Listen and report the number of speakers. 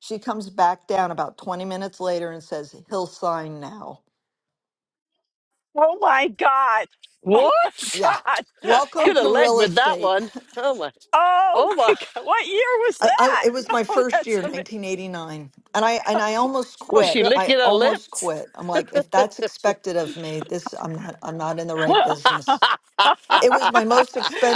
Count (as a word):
three